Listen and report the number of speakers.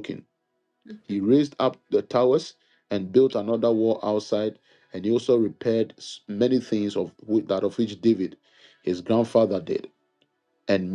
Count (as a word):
one